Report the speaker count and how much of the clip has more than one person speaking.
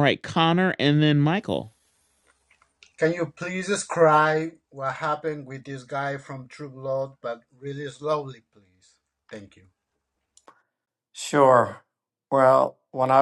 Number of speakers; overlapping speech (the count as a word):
three, no overlap